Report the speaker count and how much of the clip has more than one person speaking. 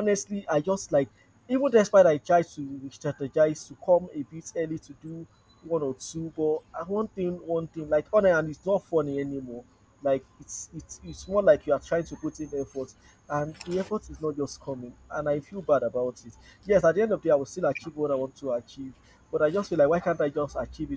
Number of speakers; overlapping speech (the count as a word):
one, no overlap